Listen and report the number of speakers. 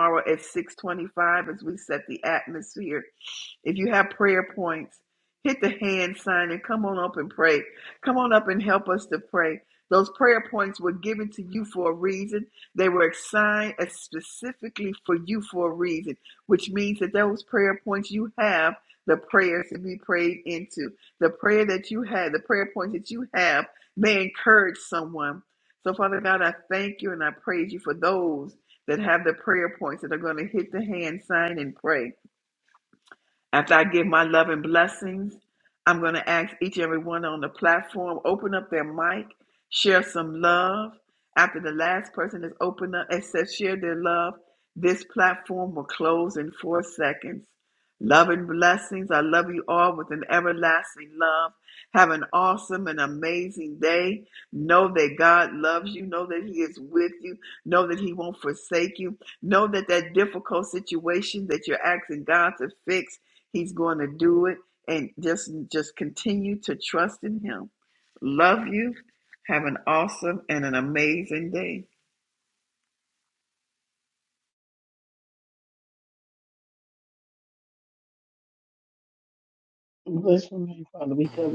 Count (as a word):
two